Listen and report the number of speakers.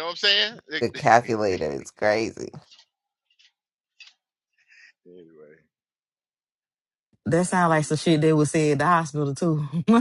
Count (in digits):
3